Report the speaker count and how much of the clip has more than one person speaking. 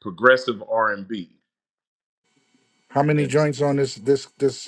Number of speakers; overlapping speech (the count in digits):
2, about 3%